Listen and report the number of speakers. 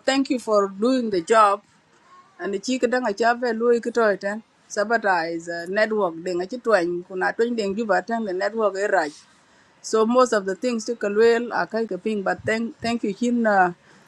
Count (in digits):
1